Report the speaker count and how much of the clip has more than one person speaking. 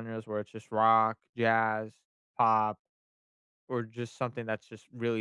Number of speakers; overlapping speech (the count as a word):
one, no overlap